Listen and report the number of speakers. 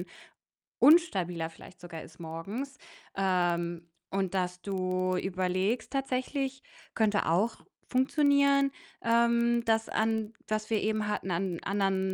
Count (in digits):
1